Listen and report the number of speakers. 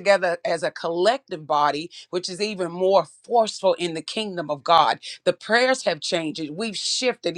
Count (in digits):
1